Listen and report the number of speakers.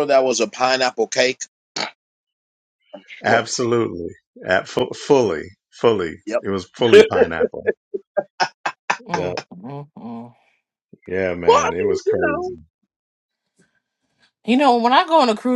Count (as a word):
three